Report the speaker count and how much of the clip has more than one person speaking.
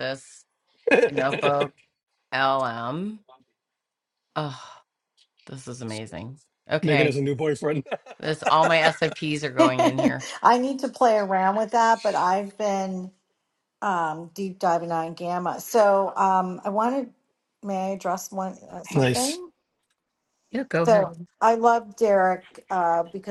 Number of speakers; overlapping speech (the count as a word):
three, about 4%